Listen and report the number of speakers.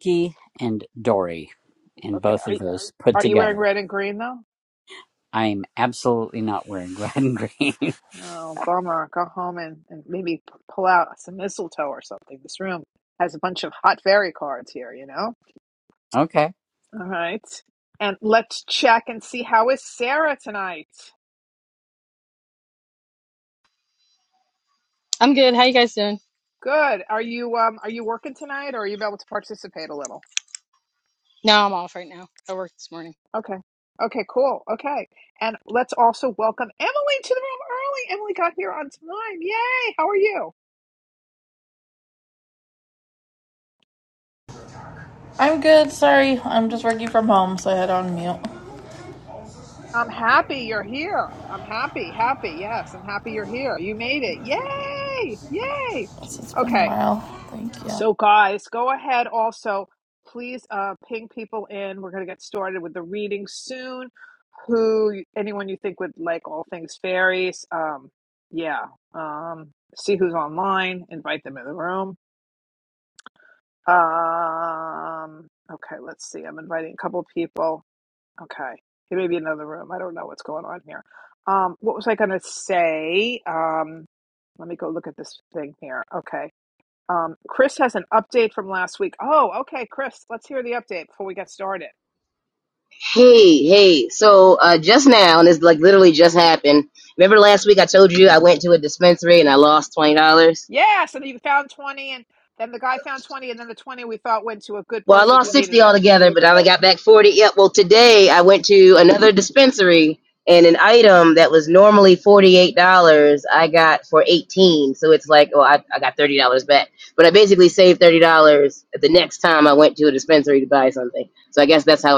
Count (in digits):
5